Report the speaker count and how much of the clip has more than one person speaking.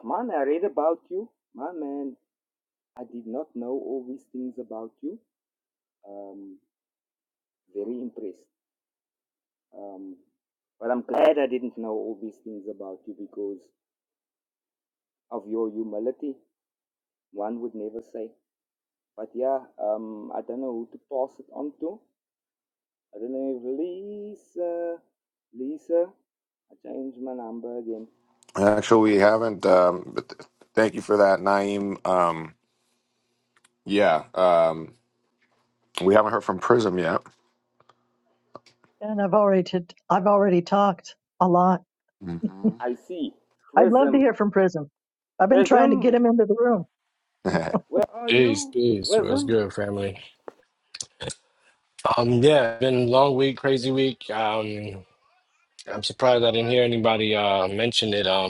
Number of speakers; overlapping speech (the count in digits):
4, about 5%